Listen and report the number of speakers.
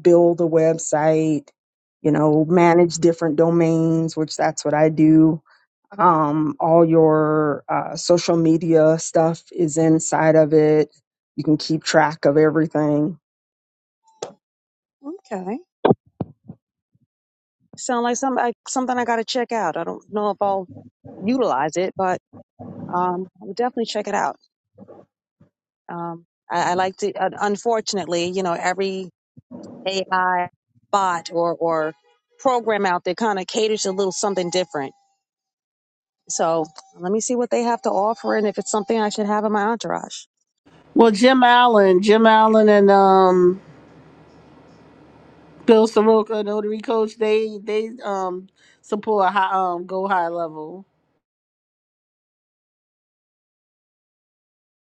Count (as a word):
three